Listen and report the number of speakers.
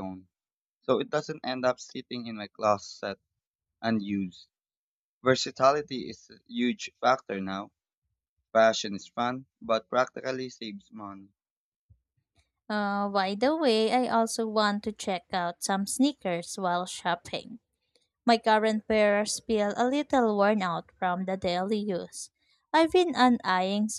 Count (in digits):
2